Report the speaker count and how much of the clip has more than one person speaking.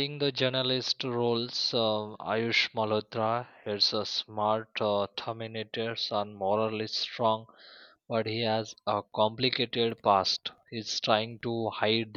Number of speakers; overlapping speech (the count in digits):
1, no overlap